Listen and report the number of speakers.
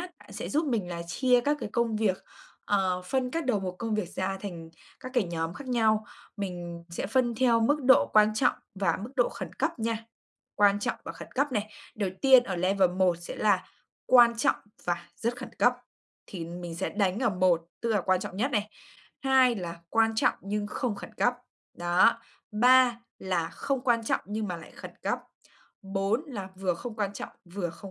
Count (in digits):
1